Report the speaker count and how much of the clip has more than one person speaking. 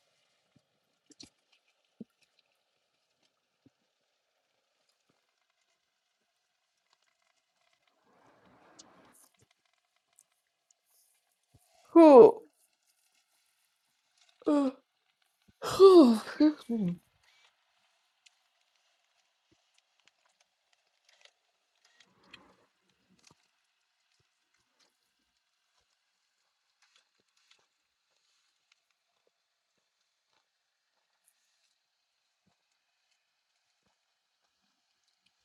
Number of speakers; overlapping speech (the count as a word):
one, no overlap